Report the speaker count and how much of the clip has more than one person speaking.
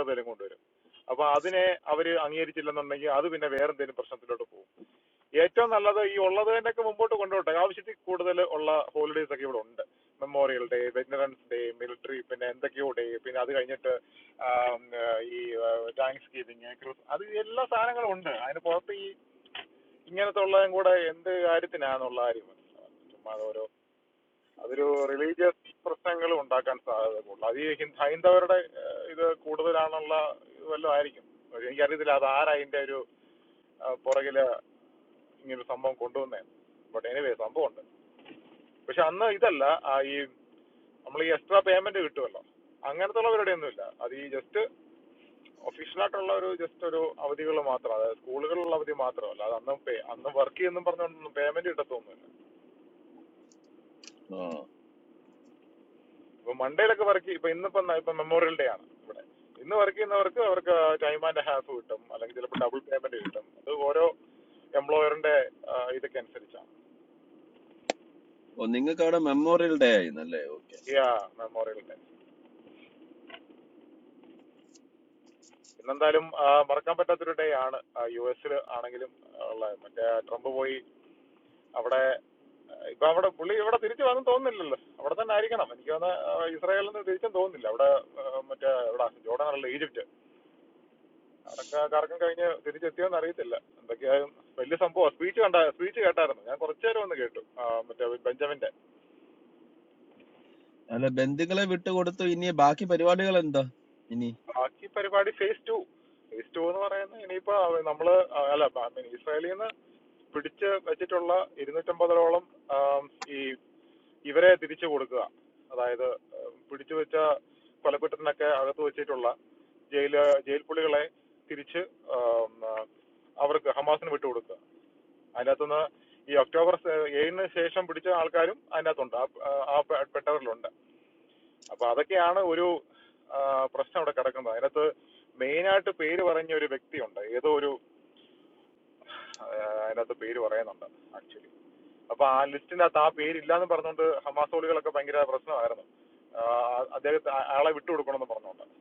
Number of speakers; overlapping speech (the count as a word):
two, no overlap